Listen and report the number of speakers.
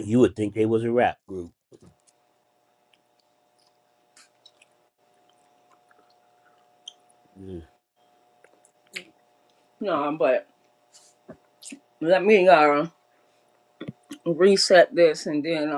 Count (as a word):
two